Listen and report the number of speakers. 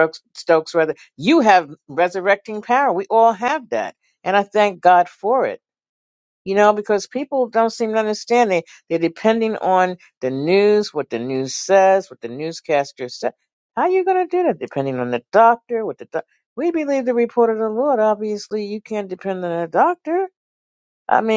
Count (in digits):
1